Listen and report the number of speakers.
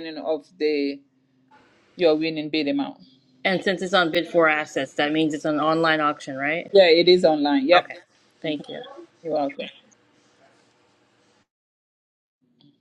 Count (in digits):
2